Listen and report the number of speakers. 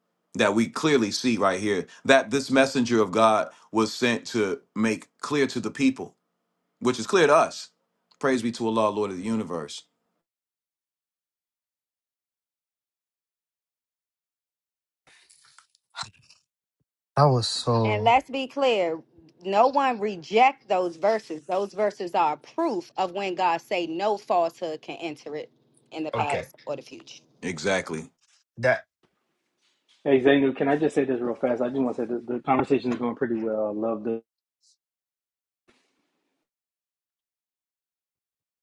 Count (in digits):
4